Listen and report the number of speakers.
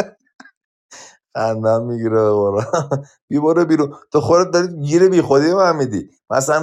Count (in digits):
1